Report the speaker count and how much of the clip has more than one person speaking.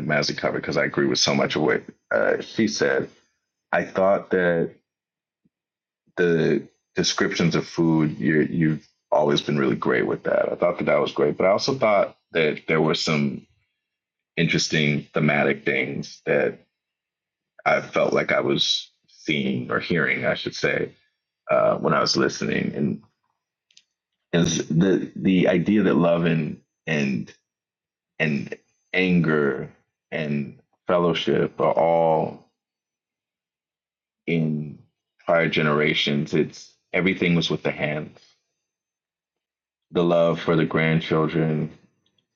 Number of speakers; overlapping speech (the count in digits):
1, no overlap